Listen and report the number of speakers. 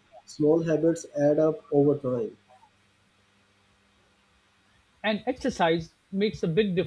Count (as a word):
two